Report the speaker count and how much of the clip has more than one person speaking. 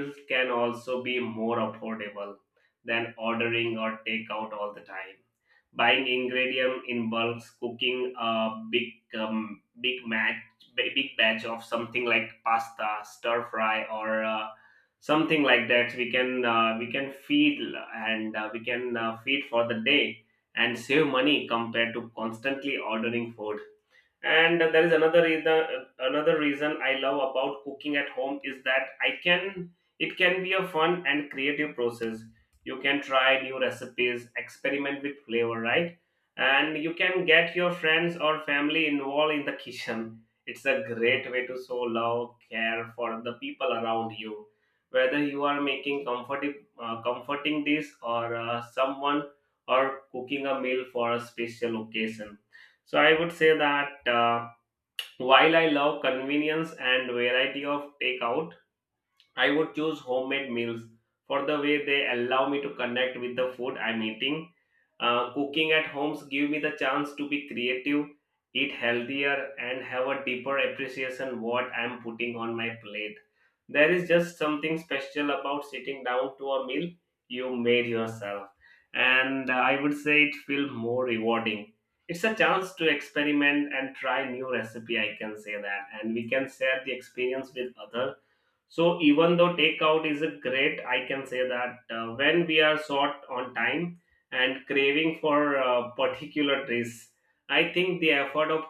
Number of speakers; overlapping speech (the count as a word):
one, no overlap